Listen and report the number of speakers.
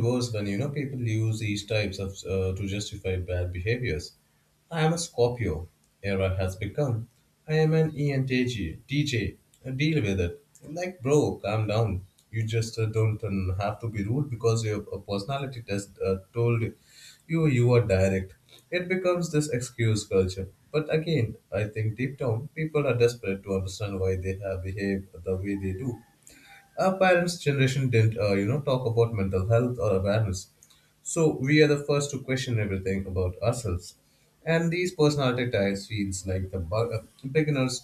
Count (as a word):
one